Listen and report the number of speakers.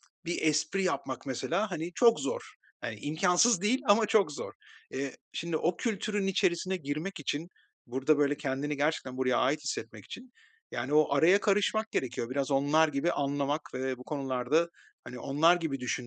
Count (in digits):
1